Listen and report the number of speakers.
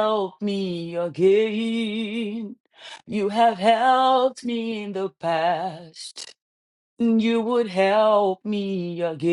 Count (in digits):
1